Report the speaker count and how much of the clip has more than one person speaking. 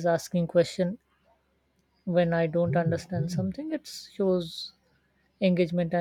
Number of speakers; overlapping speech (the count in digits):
1, no overlap